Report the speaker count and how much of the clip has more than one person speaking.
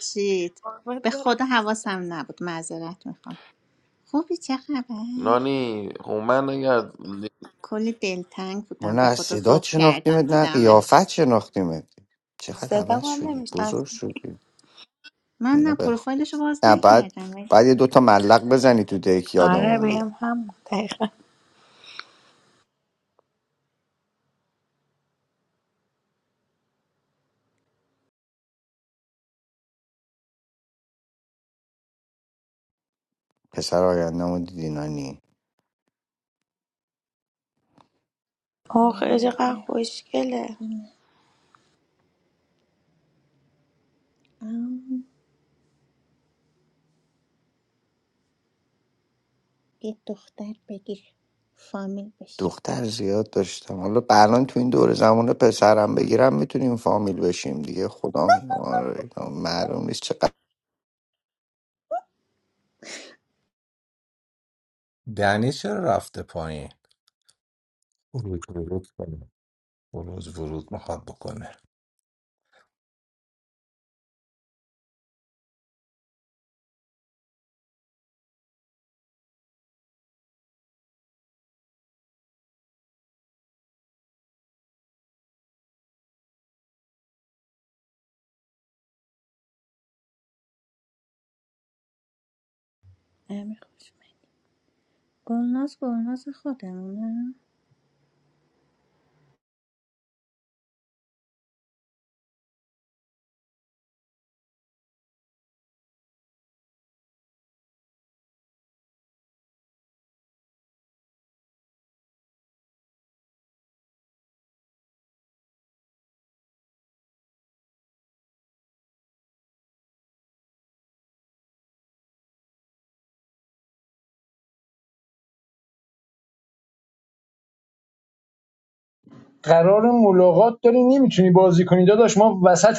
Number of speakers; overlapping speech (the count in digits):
6, about 5%